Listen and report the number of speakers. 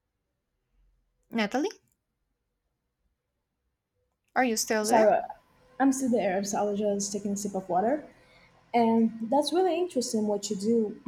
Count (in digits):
2